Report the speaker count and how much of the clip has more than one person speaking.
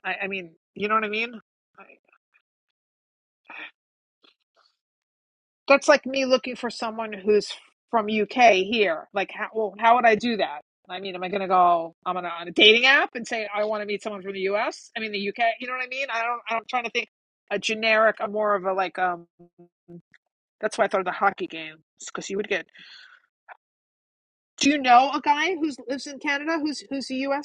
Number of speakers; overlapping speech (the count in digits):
1, no overlap